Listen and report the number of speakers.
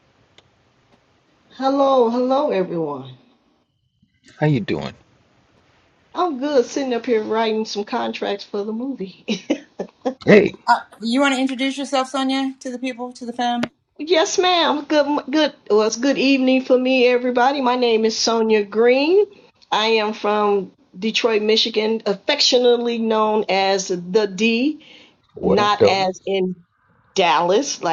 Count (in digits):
3